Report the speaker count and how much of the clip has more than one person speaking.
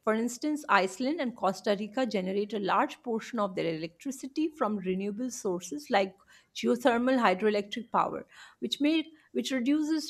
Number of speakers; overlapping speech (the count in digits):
1, no overlap